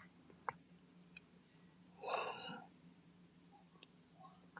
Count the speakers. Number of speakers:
zero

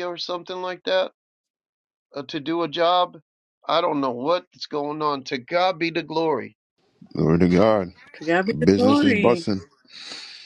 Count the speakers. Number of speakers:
three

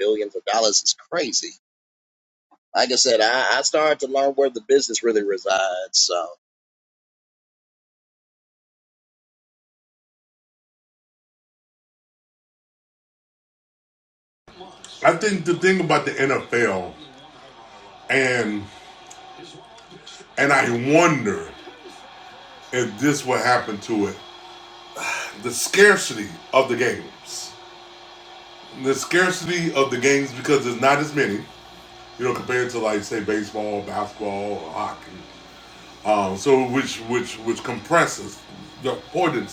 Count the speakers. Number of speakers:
two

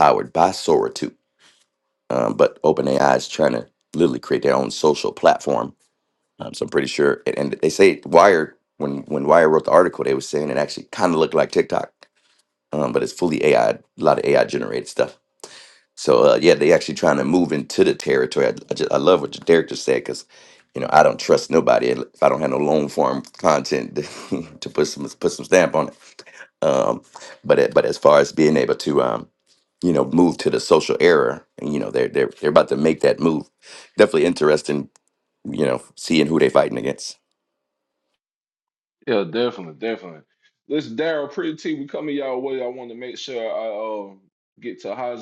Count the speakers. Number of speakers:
two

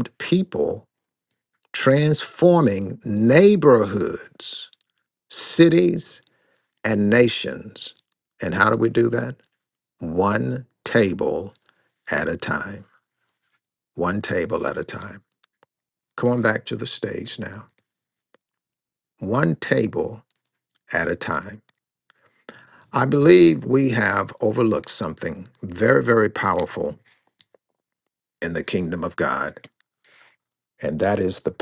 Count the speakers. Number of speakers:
one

